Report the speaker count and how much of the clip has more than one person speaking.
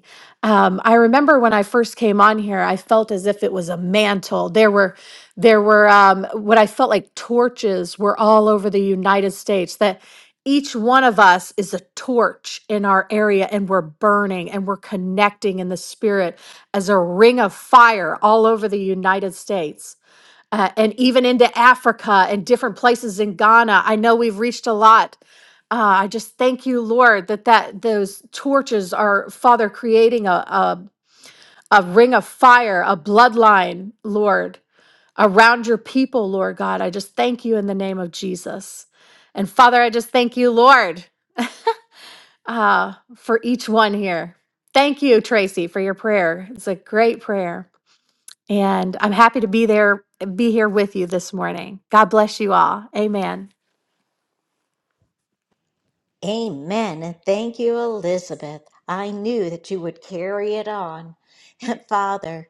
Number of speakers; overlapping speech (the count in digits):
2, no overlap